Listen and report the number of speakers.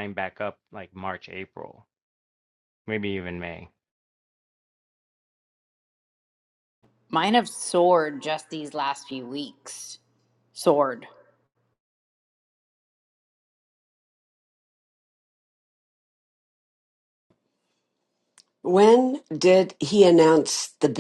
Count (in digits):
3